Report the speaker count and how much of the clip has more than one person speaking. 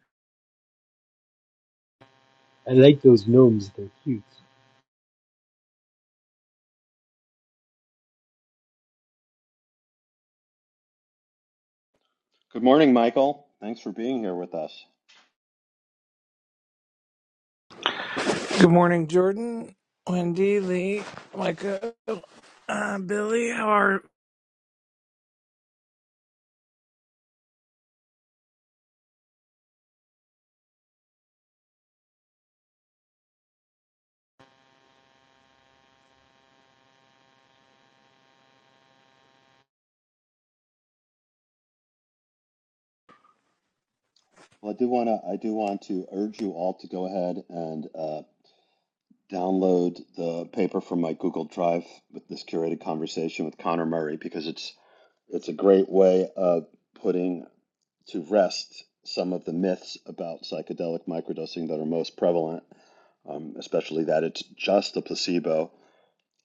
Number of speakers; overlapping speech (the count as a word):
three, no overlap